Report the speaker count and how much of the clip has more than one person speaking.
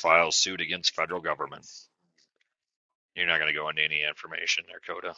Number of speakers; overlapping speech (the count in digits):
1, no overlap